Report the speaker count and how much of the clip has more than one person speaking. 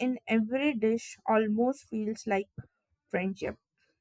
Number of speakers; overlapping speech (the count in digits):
1, no overlap